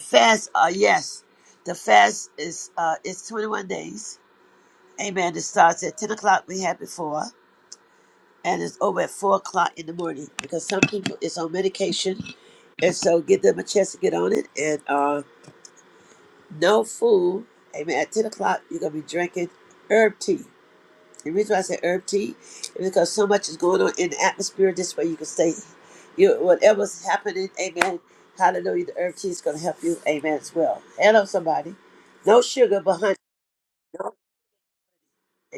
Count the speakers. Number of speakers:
1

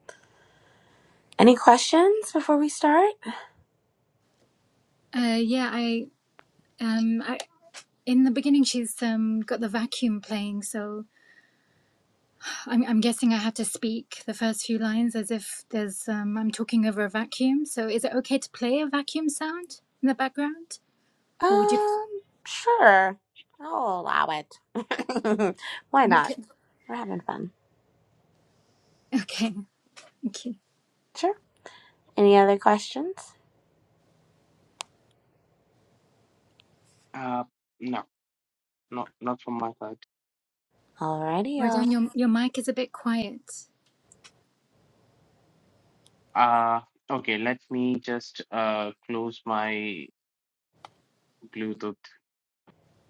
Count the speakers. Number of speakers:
3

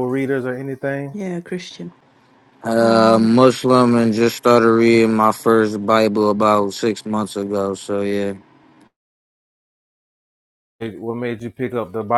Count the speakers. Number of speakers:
3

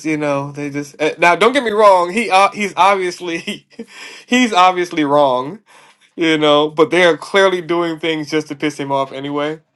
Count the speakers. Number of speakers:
1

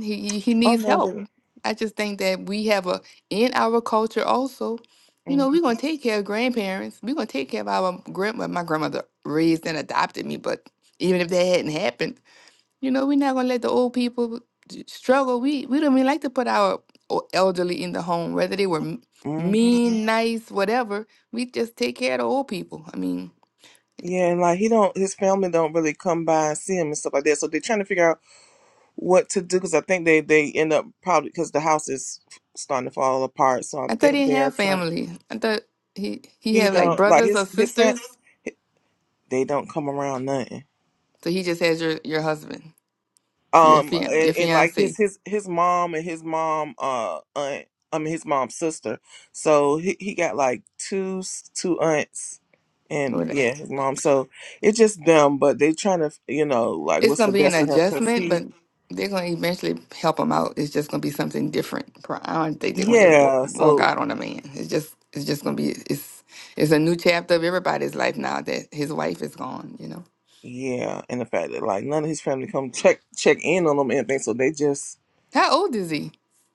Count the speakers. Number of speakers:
2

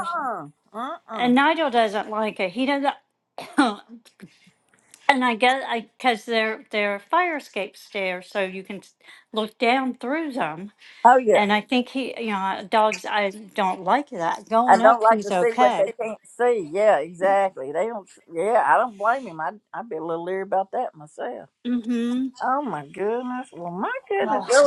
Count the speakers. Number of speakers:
2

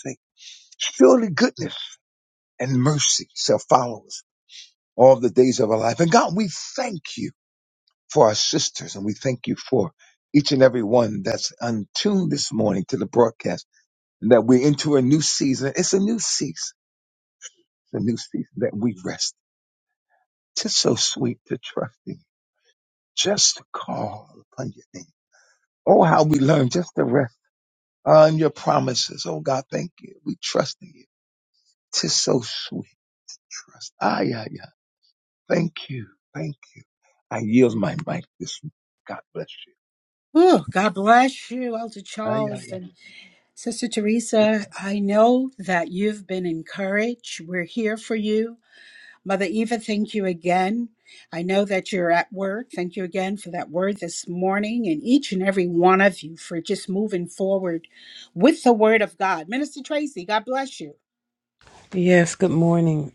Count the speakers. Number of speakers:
3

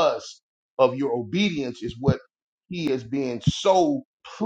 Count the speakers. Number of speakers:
1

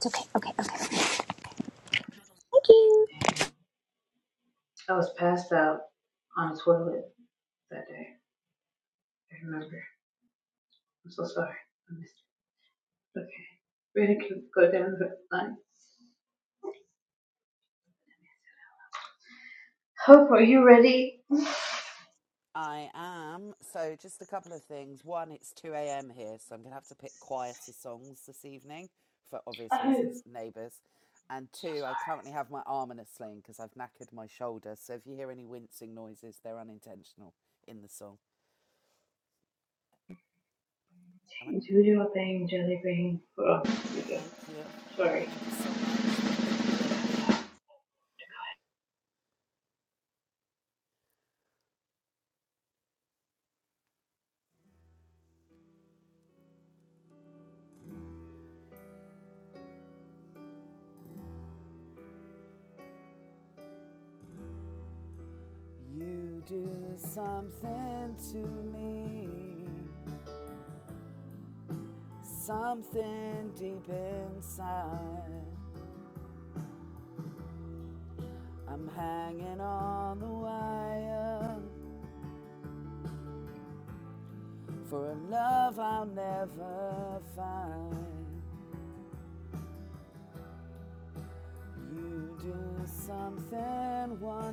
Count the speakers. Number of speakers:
3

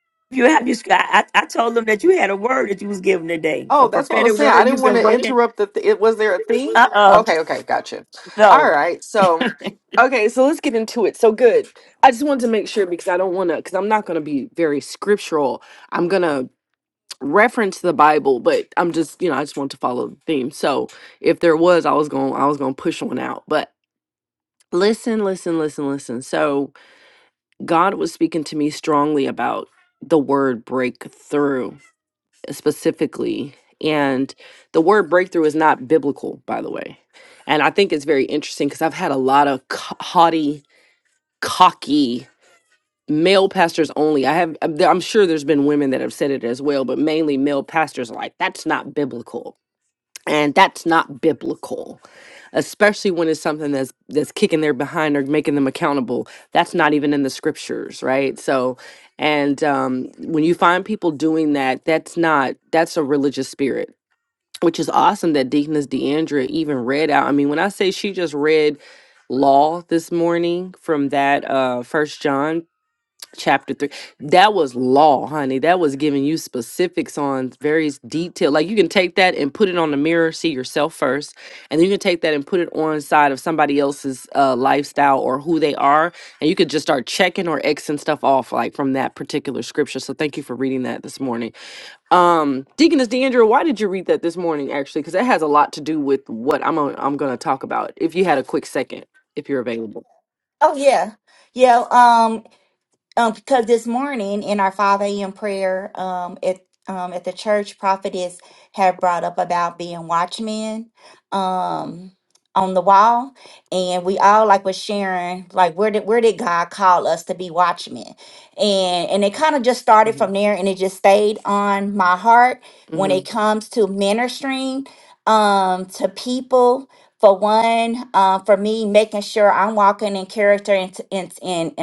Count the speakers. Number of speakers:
3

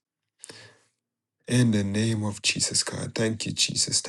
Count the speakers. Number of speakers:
1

